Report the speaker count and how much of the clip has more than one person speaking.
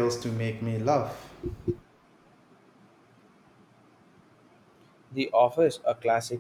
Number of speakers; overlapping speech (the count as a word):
two, no overlap